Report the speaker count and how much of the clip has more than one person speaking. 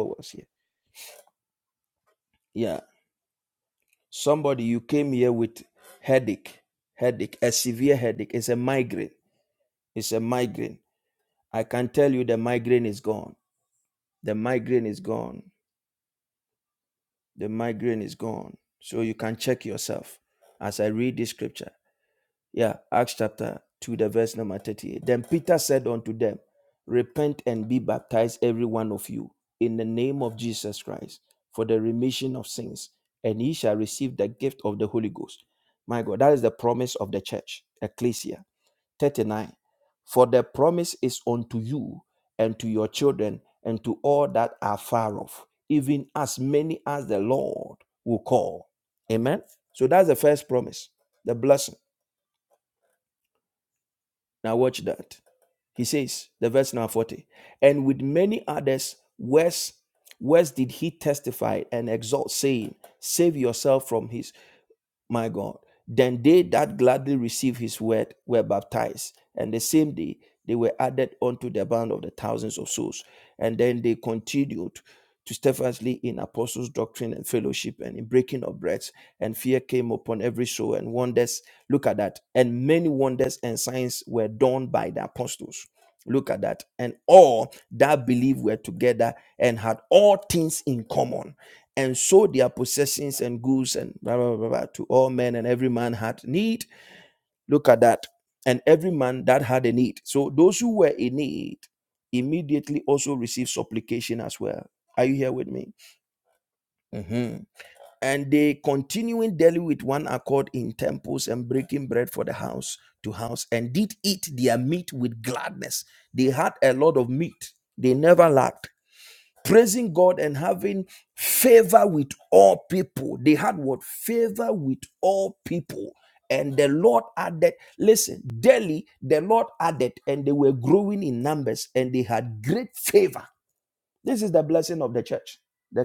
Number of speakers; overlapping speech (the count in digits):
1, no overlap